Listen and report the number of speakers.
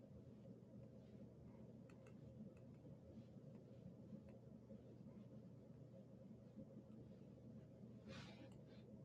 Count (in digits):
0